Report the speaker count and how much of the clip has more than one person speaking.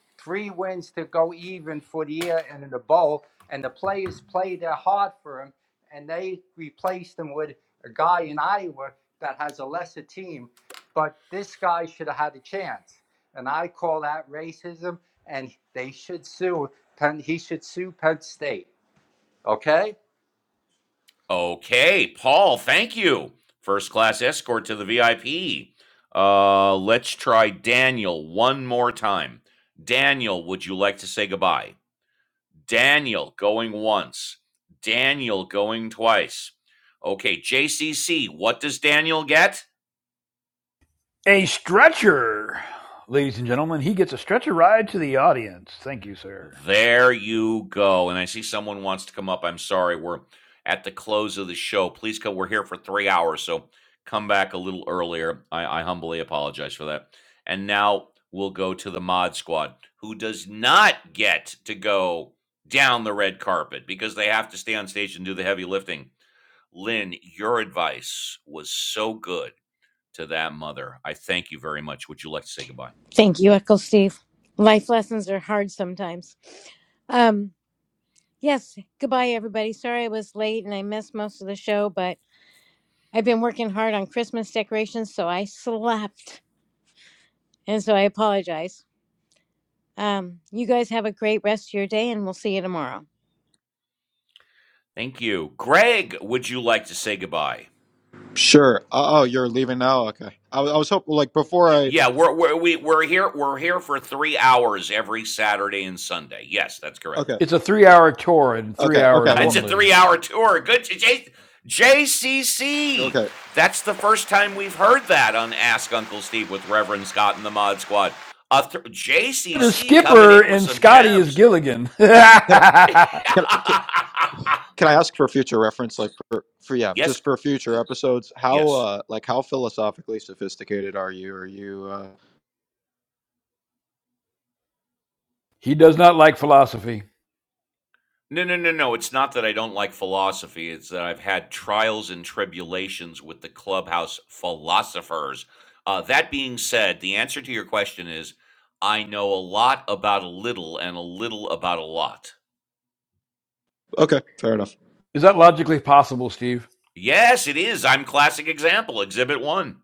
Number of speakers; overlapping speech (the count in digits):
5, about 2%